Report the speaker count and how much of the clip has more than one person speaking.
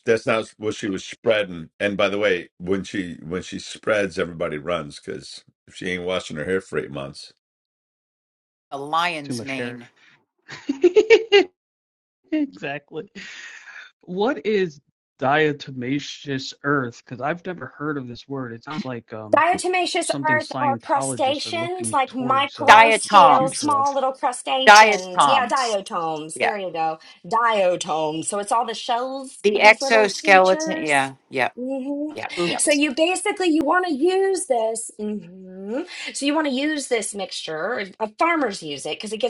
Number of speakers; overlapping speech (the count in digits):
4, about 18%